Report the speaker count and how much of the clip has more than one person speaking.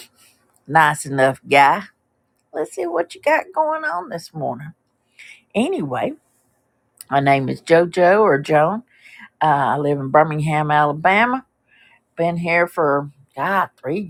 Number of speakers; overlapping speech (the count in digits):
1, no overlap